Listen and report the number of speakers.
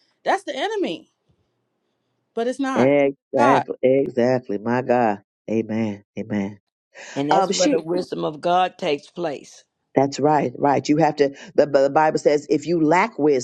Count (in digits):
3